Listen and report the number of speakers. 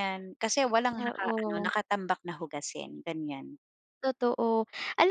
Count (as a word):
two